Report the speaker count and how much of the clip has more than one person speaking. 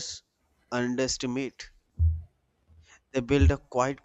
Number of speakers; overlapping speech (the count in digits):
1, no overlap